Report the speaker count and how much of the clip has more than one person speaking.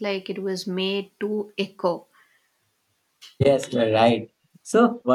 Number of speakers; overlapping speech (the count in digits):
2, no overlap